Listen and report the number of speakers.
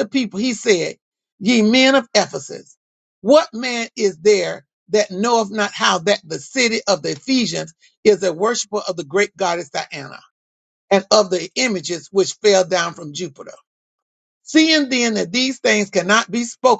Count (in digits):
1